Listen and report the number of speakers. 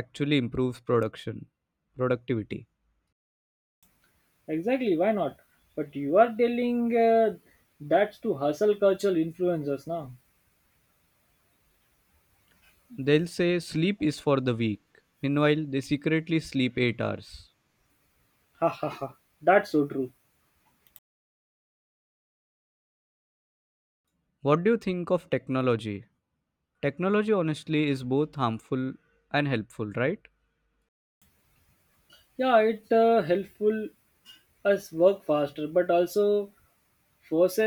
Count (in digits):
2